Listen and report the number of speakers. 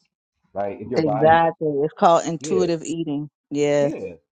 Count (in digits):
2